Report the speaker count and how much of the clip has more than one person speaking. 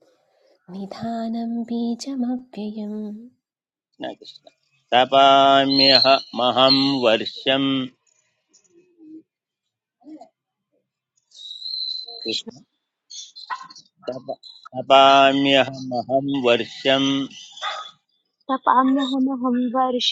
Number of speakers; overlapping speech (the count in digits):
3, about 1%